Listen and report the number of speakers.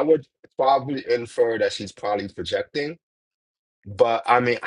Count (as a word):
one